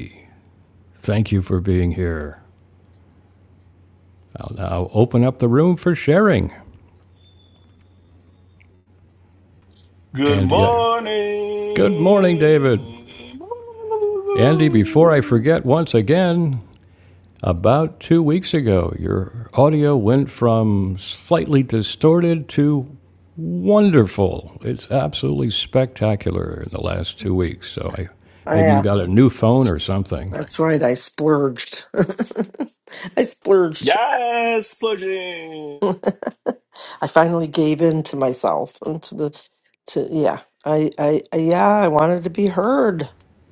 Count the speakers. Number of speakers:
3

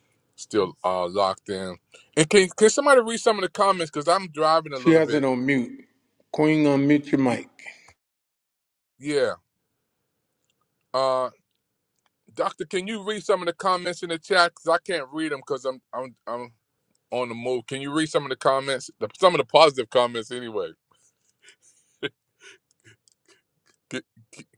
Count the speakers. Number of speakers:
2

